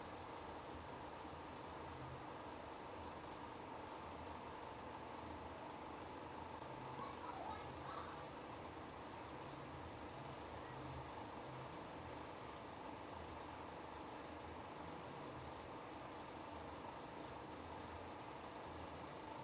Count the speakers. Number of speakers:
0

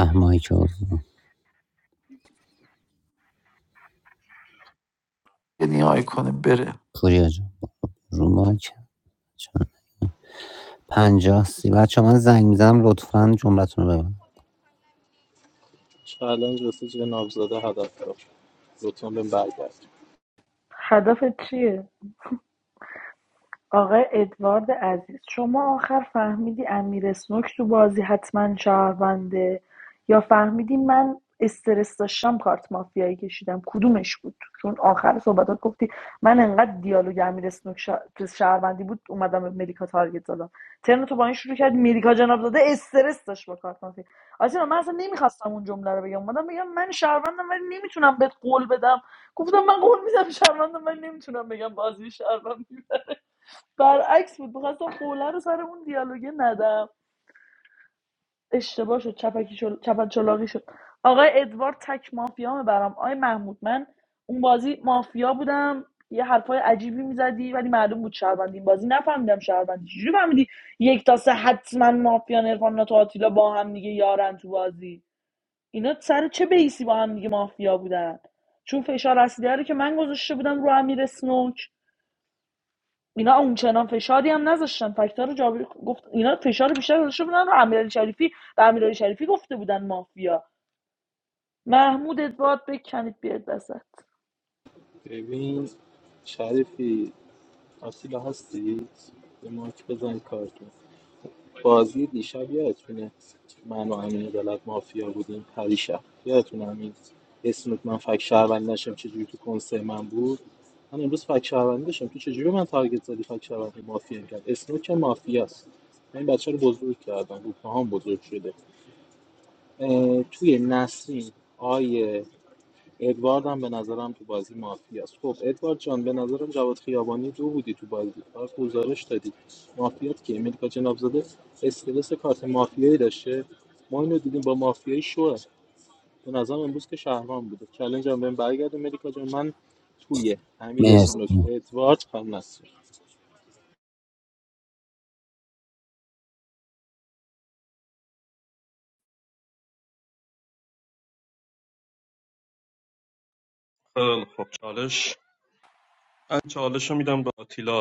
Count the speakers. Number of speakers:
5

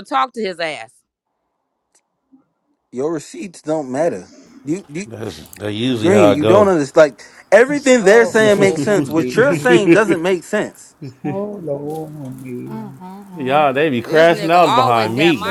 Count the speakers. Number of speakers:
4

